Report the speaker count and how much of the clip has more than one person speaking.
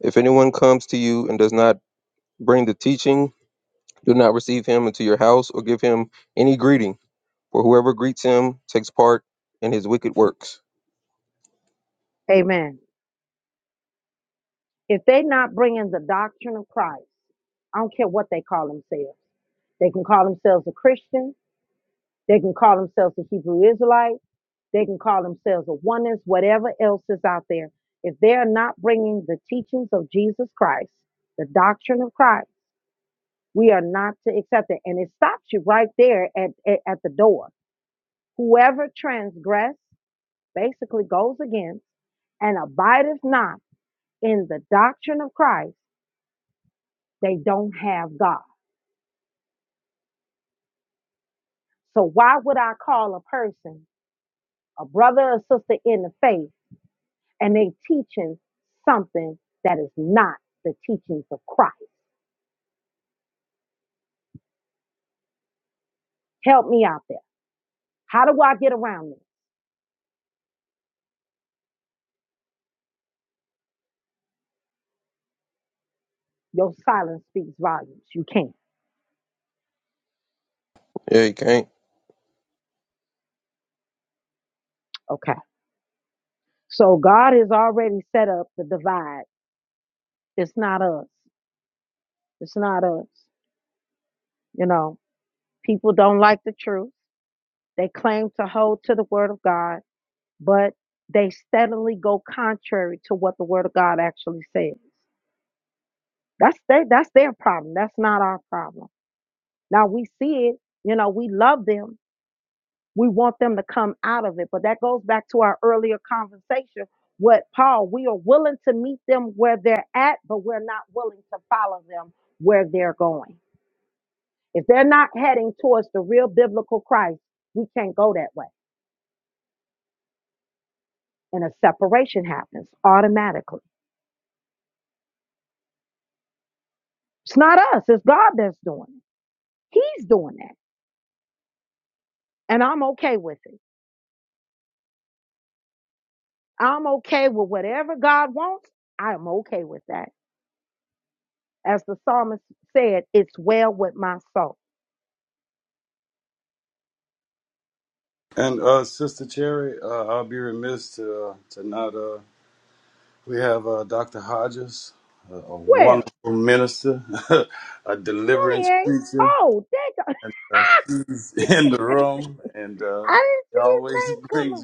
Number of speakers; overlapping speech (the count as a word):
three, about 1%